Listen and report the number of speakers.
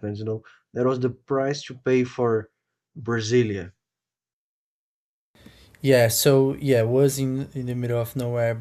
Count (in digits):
2